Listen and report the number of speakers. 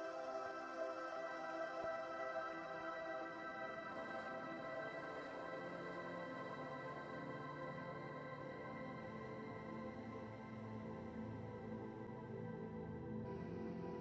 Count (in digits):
0